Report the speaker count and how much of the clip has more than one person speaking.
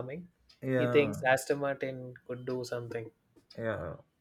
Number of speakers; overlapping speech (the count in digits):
2, about 10%